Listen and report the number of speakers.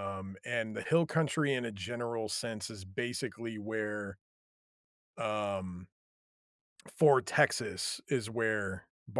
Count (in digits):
1